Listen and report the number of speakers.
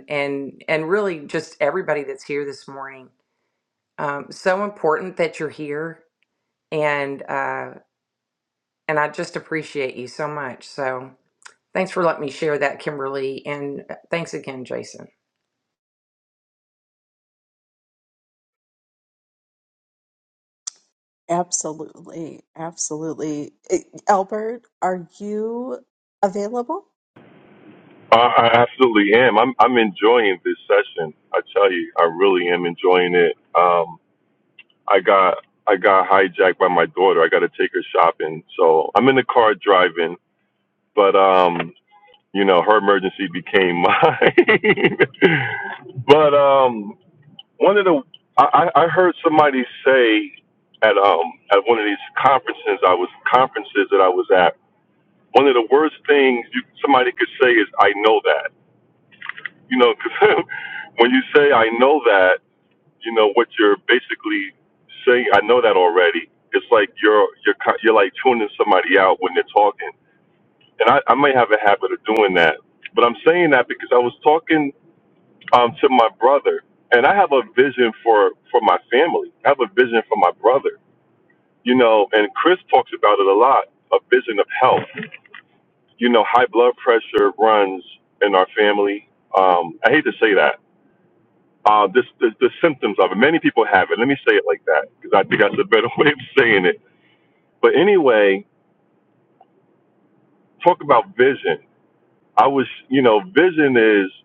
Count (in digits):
3